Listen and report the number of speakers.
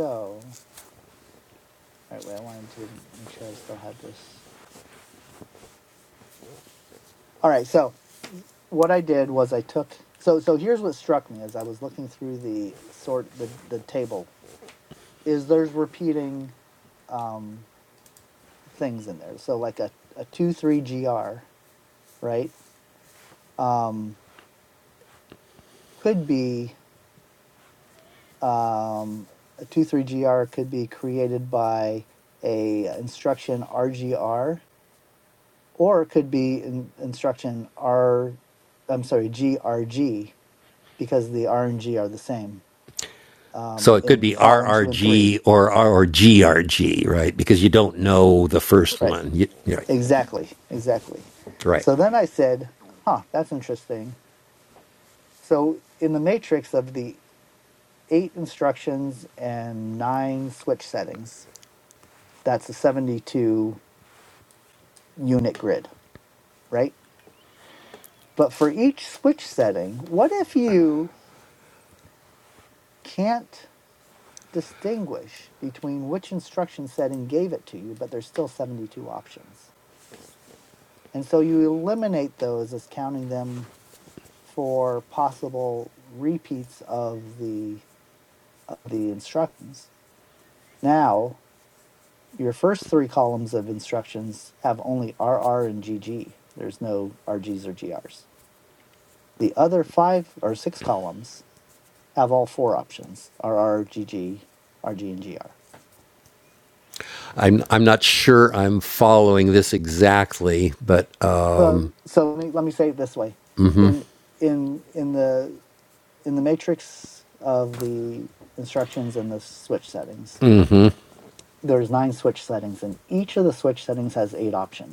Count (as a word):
two